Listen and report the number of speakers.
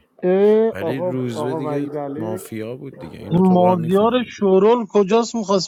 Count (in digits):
3